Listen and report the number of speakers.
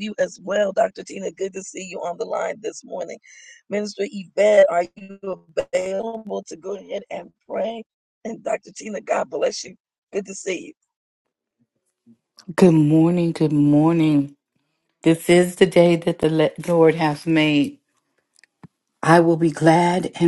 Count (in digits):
2